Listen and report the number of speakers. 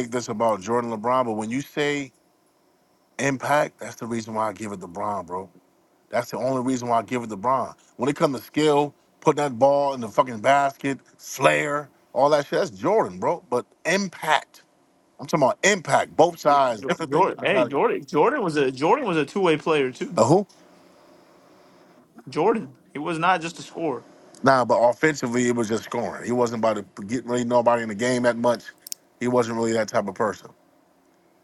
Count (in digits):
2